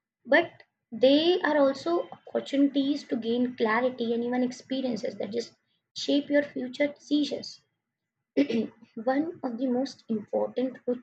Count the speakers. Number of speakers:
one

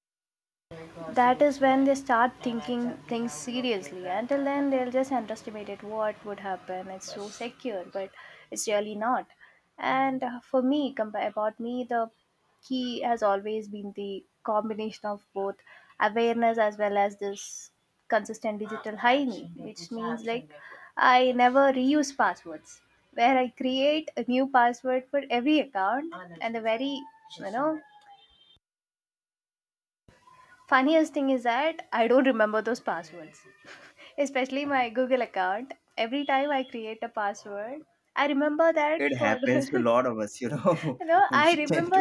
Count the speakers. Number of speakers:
two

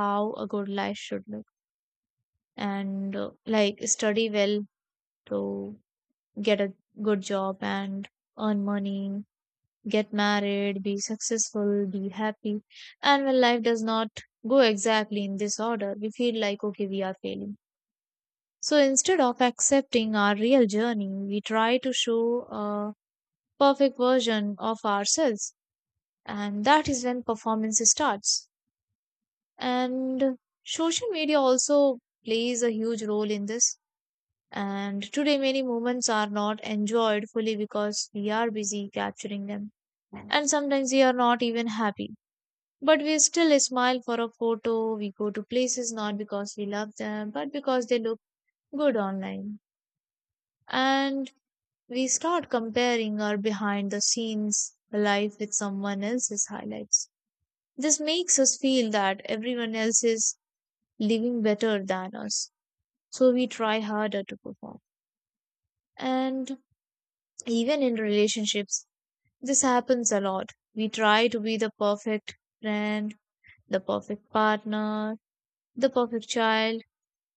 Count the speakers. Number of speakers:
one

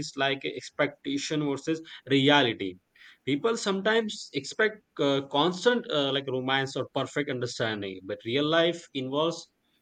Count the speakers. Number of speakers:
one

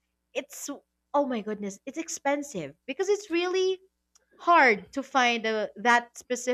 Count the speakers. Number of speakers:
one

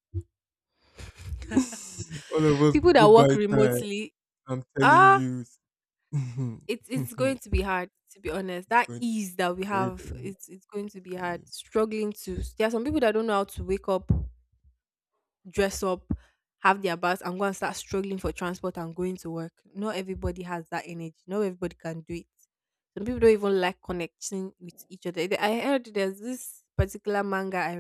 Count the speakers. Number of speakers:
two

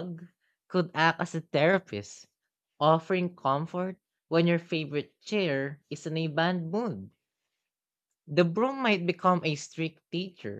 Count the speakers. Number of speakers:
one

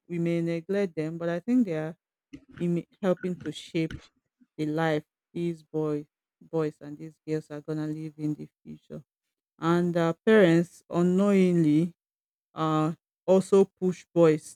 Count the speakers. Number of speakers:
one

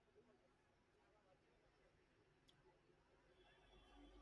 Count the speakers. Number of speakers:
zero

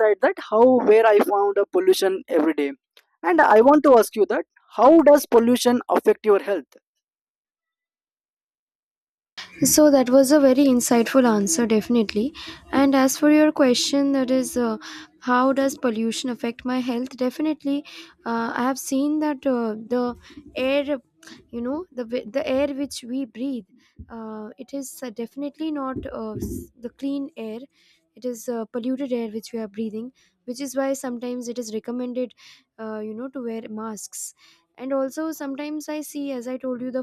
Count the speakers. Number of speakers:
two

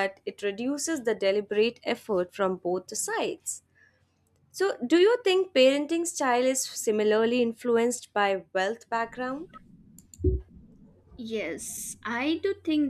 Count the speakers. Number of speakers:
two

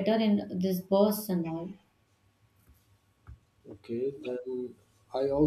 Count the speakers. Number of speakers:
two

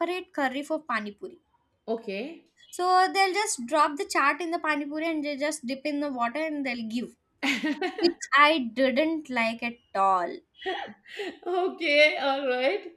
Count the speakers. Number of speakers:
two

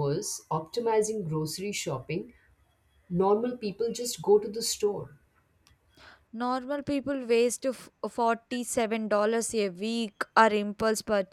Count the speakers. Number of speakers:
two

